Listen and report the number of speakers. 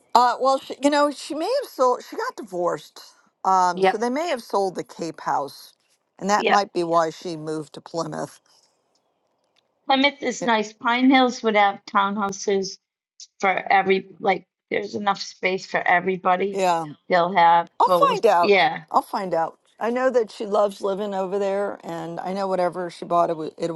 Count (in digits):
2